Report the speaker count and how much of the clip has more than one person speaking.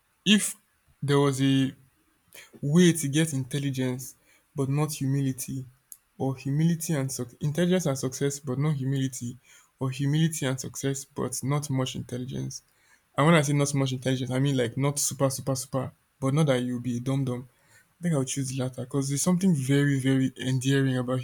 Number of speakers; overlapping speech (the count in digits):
1, no overlap